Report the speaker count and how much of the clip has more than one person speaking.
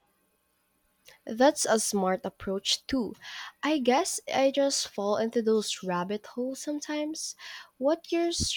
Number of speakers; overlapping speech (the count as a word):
one, no overlap